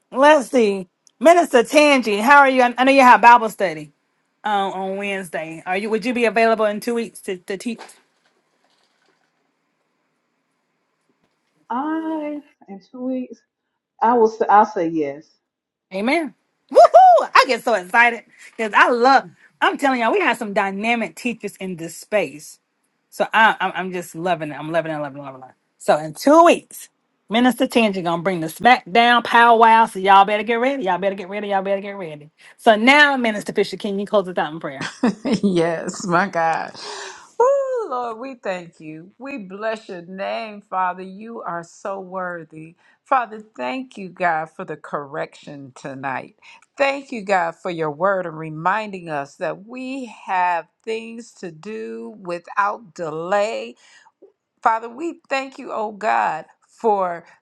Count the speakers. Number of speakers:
3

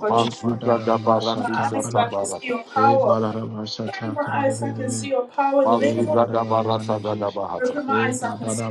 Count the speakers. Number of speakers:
3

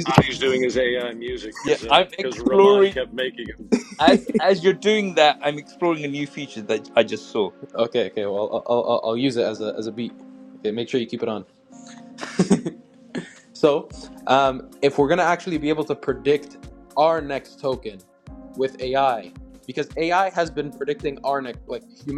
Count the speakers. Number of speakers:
3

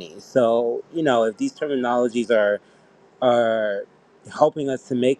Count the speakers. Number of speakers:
1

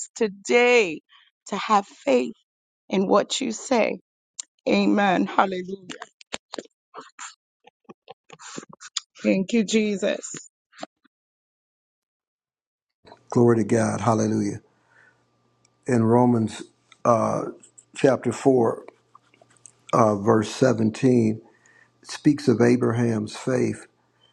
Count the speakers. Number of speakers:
2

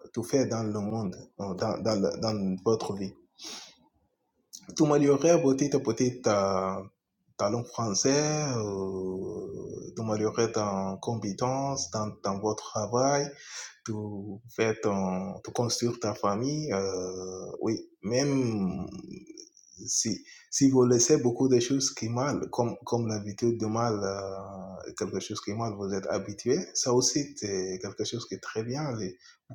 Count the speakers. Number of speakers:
1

